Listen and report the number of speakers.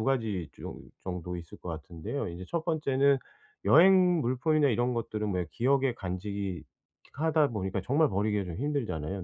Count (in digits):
1